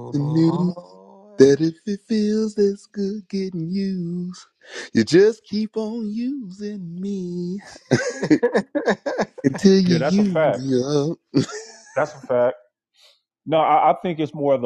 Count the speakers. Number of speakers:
three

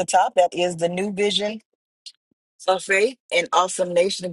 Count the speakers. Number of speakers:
one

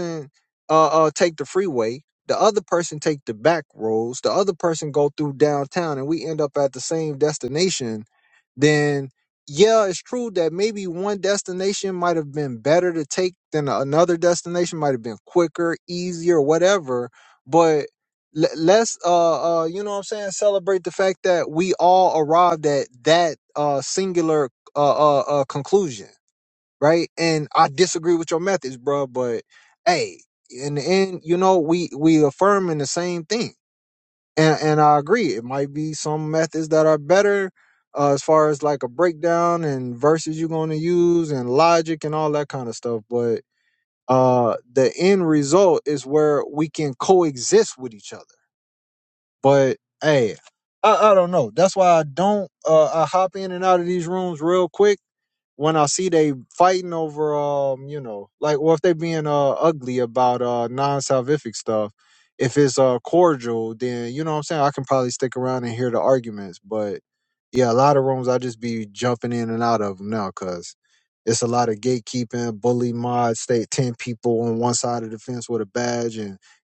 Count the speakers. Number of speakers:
one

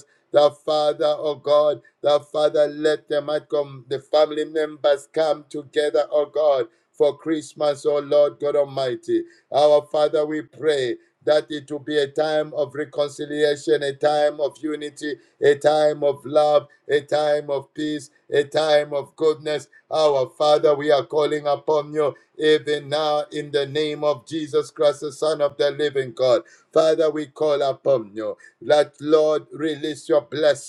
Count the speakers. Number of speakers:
one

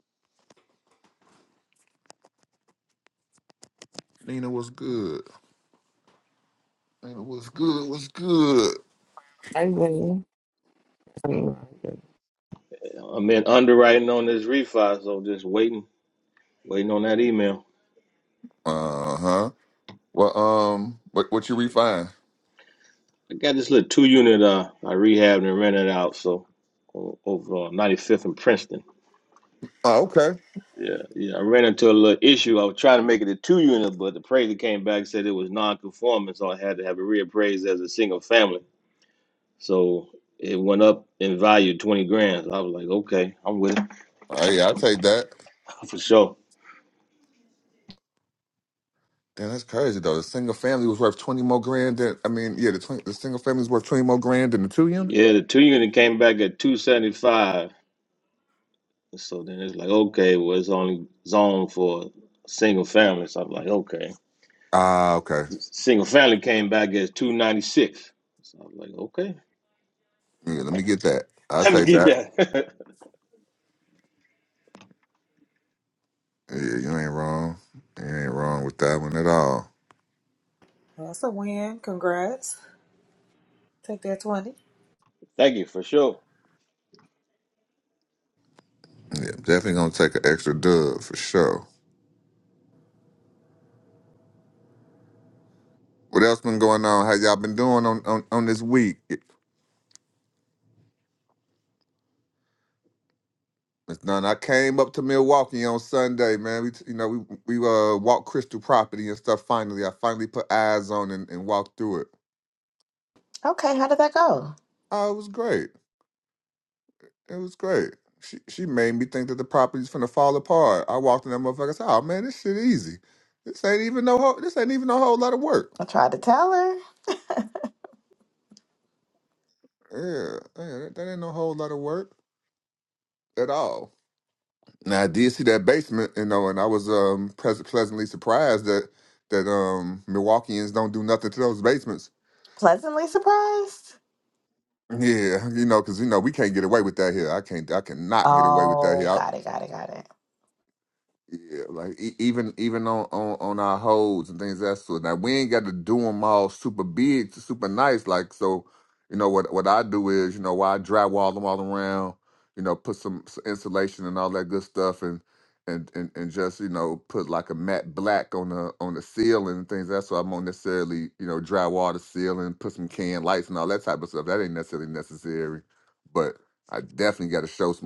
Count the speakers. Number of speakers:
five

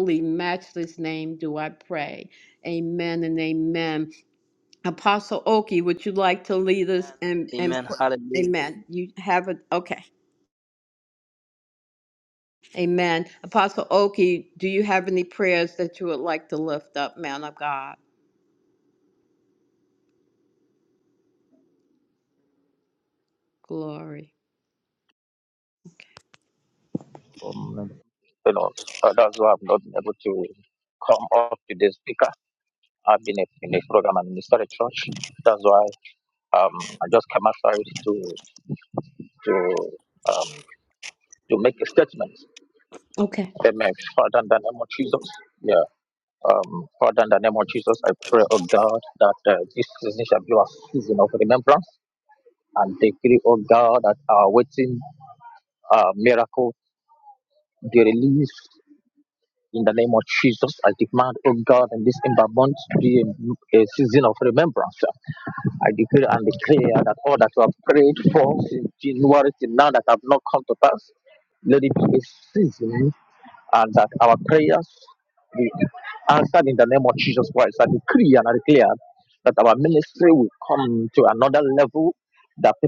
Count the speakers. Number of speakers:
three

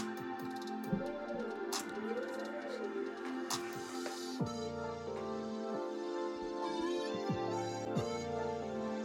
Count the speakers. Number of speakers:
zero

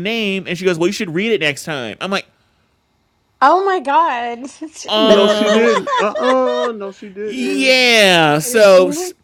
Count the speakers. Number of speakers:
three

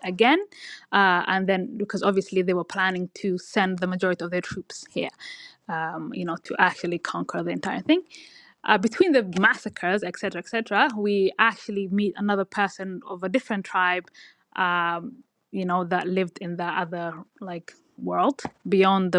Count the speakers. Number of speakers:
one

